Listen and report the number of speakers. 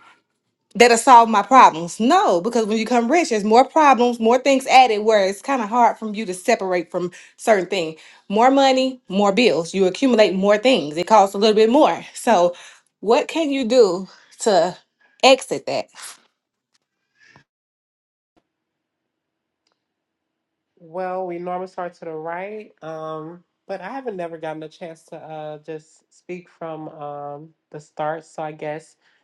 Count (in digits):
2